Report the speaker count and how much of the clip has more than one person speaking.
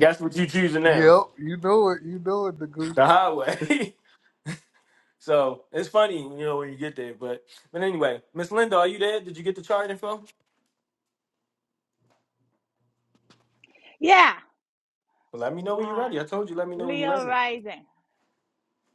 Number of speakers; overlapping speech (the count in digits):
3, about 6%